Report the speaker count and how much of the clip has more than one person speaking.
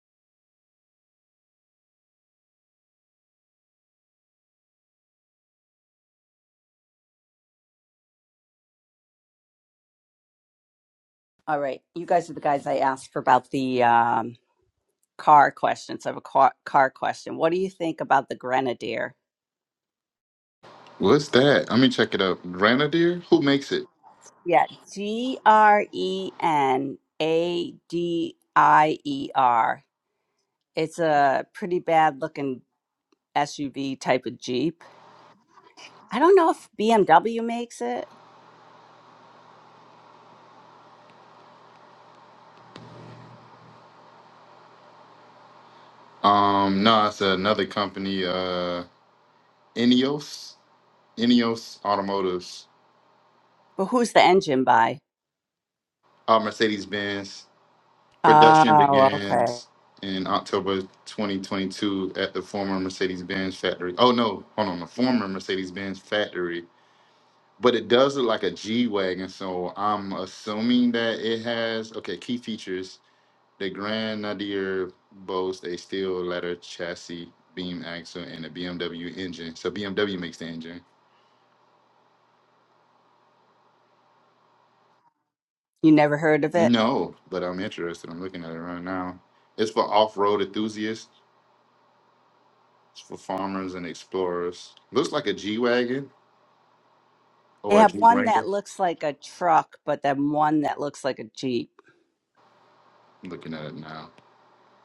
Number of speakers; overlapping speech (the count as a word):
two, about 2%